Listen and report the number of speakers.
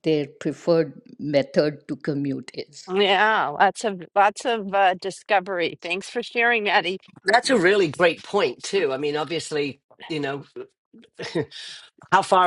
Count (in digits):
3